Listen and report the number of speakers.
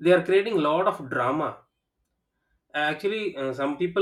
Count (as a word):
one